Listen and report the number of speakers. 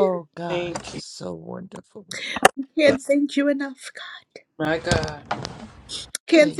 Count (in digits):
3